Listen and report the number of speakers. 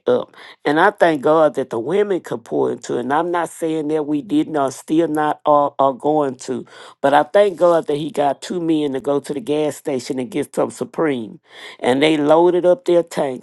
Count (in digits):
1